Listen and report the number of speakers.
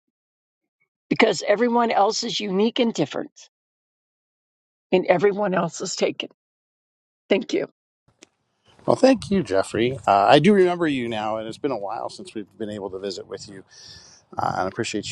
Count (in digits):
2